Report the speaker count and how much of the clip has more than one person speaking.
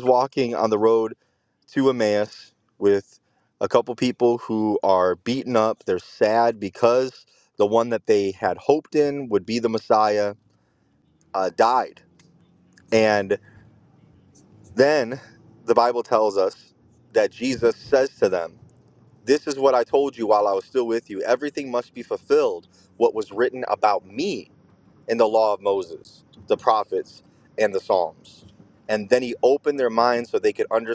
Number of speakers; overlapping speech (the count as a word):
one, no overlap